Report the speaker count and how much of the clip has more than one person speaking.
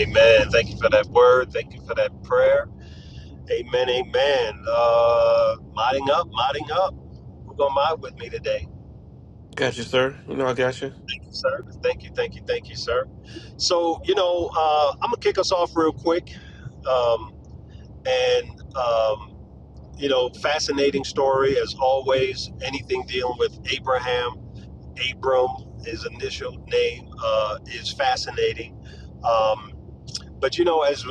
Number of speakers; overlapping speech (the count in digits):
2, no overlap